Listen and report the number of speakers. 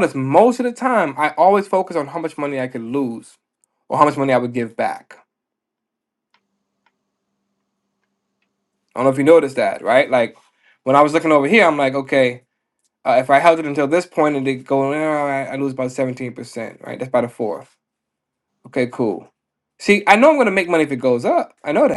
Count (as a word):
one